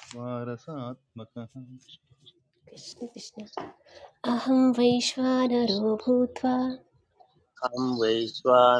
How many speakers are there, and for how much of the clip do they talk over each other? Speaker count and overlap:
3, no overlap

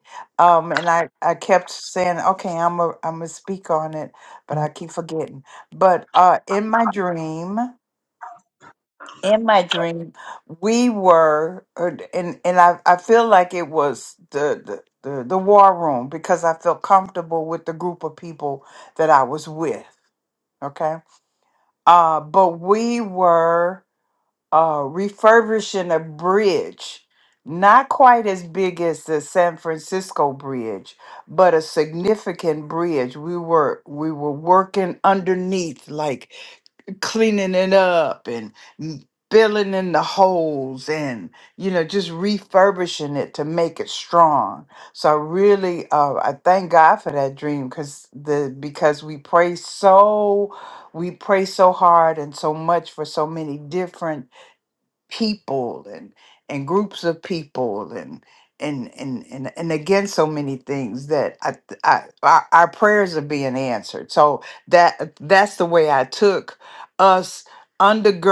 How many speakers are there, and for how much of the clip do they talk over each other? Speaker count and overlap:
1, no overlap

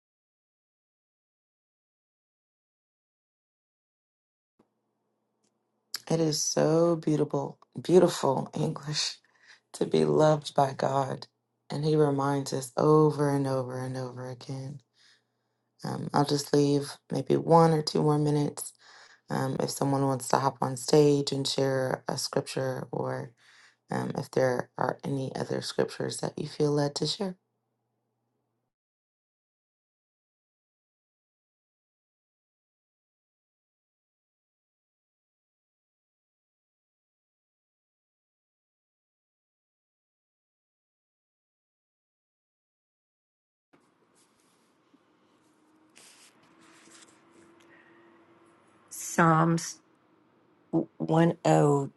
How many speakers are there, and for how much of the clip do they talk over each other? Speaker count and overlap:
2, no overlap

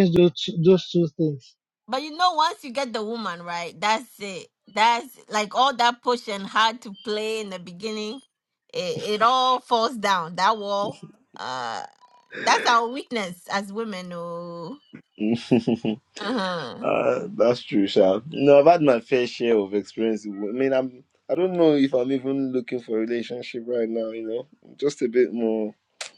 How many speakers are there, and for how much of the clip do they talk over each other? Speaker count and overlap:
3, under 1%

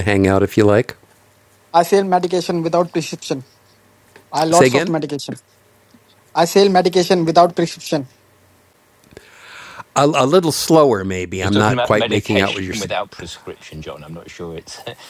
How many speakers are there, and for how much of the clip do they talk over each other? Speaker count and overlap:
3, about 12%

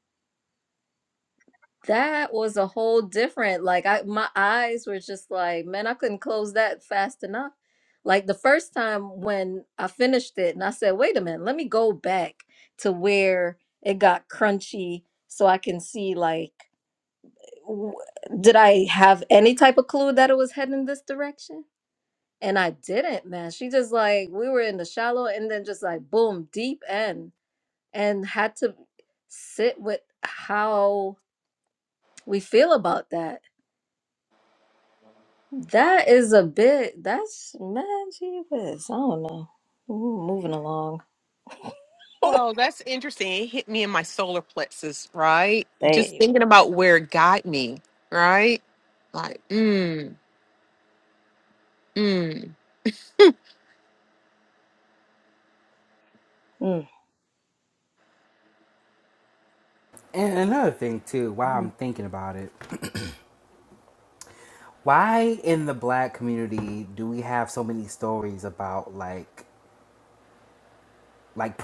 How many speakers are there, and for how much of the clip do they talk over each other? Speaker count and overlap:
3, about 1%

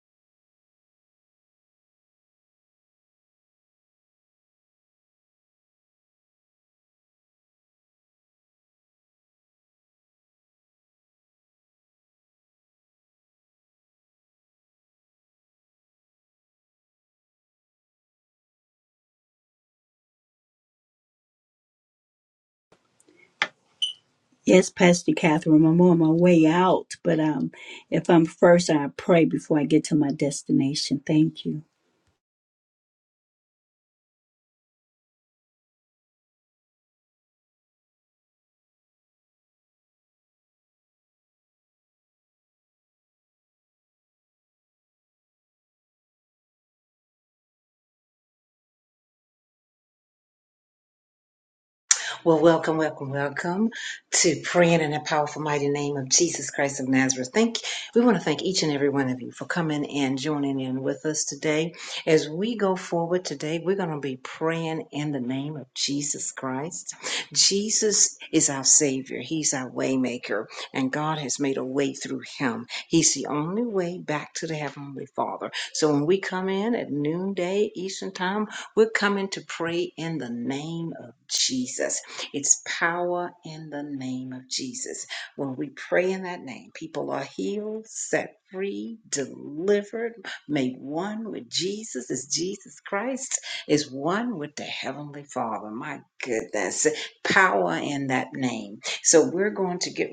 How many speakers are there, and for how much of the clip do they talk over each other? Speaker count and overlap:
2, no overlap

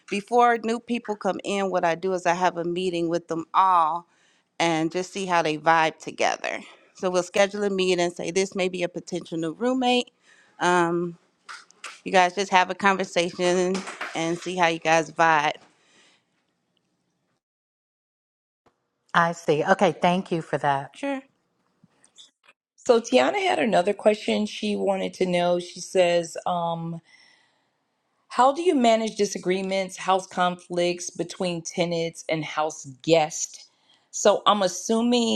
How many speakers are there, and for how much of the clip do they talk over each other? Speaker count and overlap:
3, no overlap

